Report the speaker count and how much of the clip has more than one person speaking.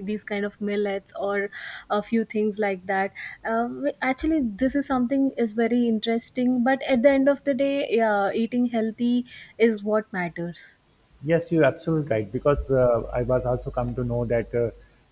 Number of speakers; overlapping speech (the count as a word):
two, no overlap